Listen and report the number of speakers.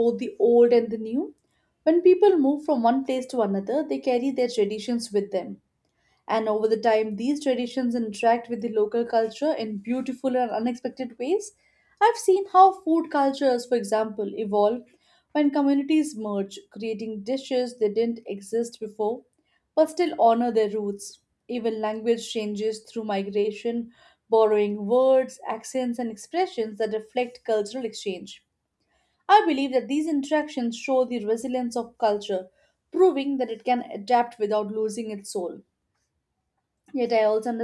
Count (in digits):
1